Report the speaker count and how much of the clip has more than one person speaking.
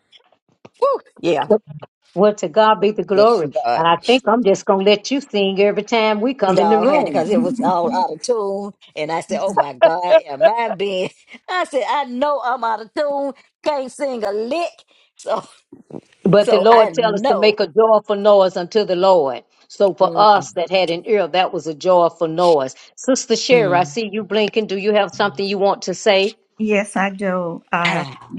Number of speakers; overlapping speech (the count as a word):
three, about 14%